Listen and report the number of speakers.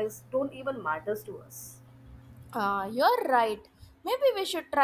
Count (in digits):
2